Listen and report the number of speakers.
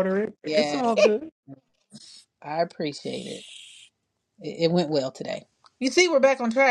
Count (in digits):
2